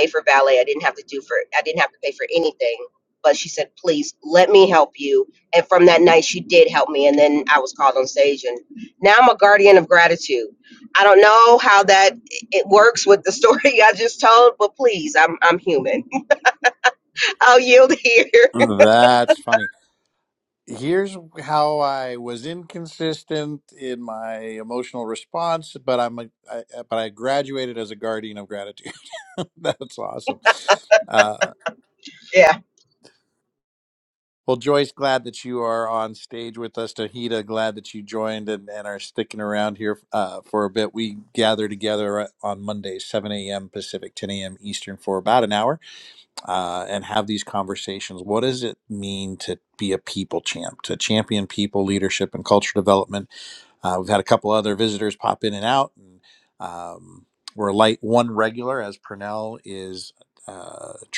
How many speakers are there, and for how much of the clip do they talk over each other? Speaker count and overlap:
2, no overlap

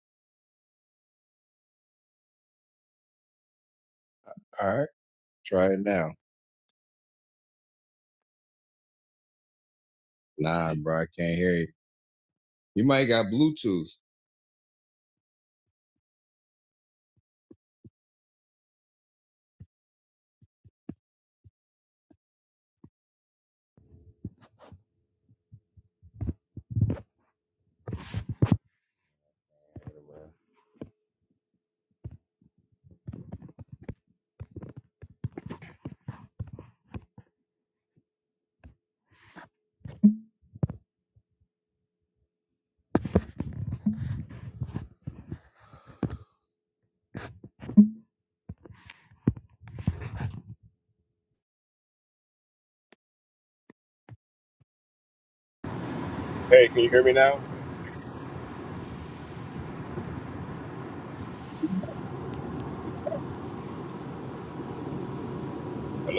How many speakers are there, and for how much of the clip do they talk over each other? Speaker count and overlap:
2, no overlap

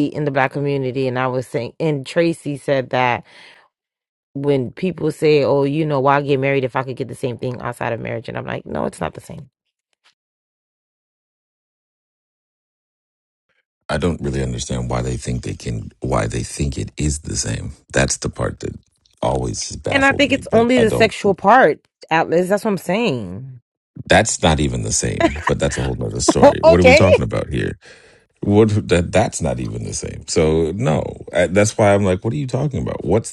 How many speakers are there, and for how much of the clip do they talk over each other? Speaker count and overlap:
2, about 5%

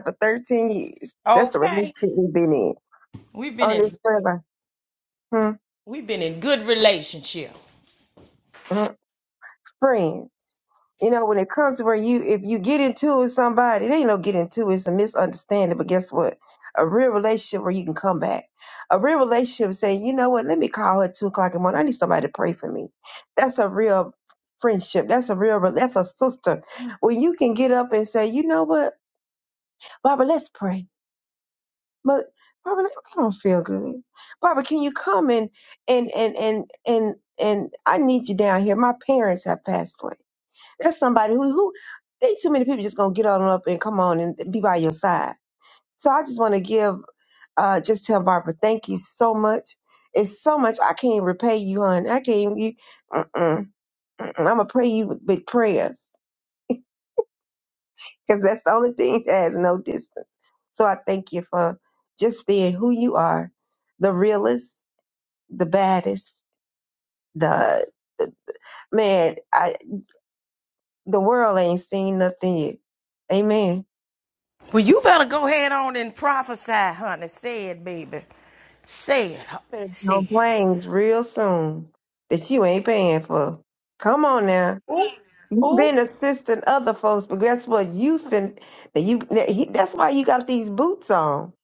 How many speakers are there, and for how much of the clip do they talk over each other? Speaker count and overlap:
2, about 2%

